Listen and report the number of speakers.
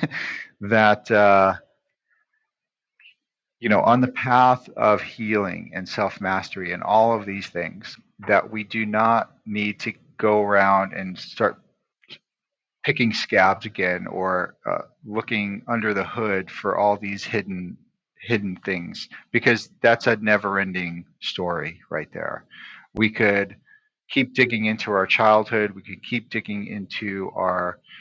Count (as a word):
one